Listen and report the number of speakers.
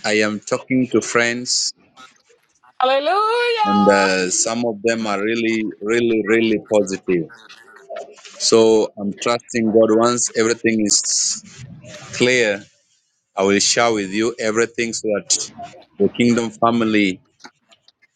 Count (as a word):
two